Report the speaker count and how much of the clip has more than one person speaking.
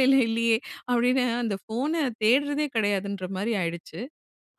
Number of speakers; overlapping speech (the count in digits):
1, no overlap